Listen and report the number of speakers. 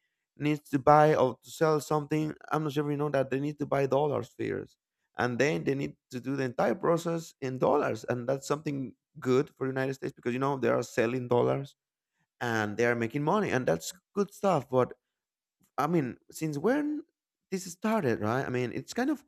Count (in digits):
1